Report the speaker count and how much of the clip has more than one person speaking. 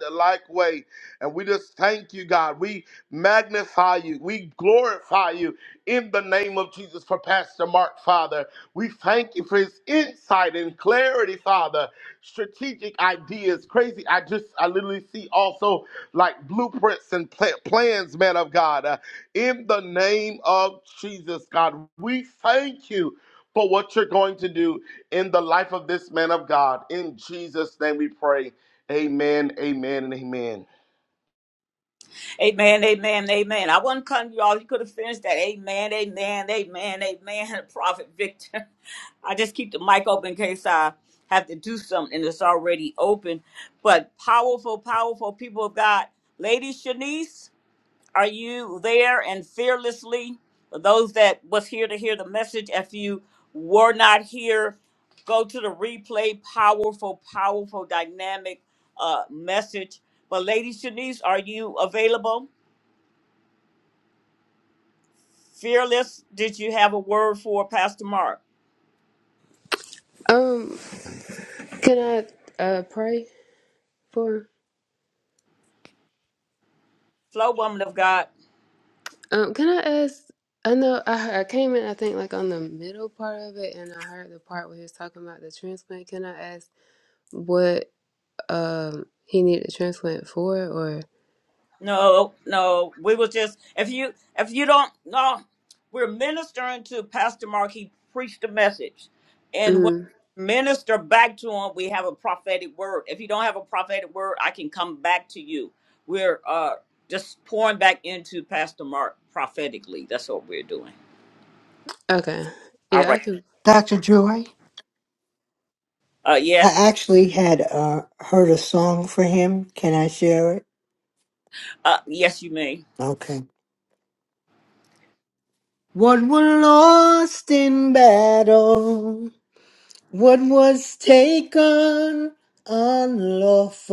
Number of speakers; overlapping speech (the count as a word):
four, under 1%